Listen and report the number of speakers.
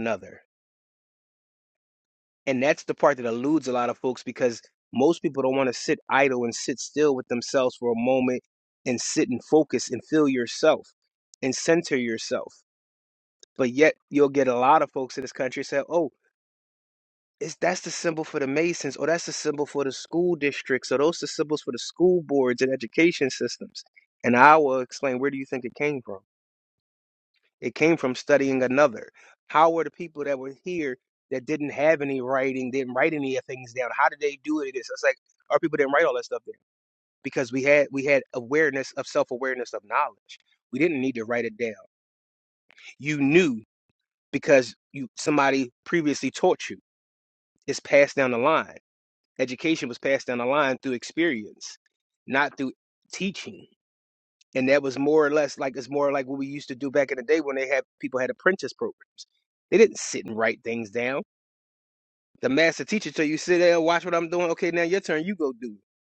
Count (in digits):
1